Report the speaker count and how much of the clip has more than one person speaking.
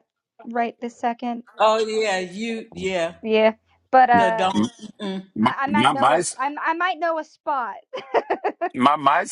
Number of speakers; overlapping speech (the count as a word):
three, about 14%